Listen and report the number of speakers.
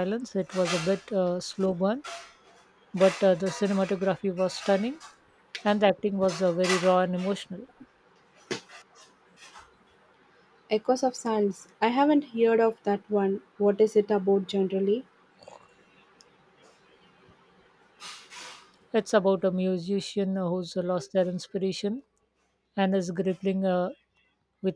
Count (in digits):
2